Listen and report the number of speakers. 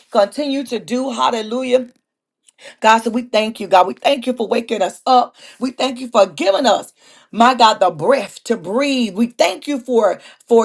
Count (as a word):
one